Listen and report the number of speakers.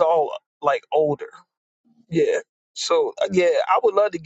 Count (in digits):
1